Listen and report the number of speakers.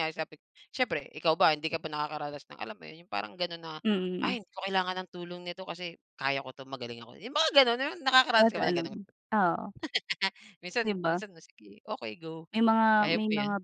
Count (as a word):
two